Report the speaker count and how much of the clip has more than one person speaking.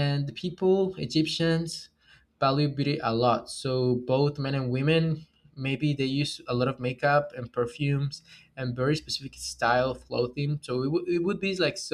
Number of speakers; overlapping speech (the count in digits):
1, no overlap